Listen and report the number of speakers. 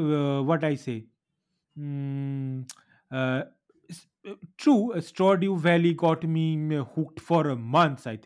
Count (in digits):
1